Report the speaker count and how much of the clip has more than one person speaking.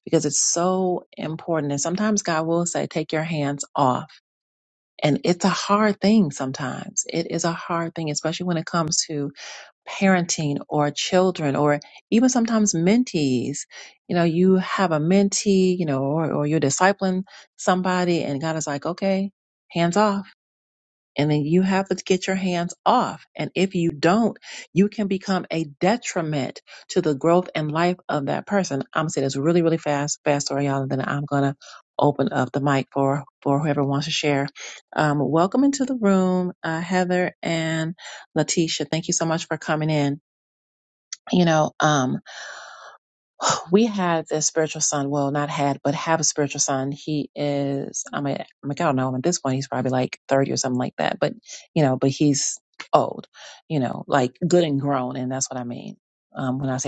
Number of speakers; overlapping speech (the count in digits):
1, no overlap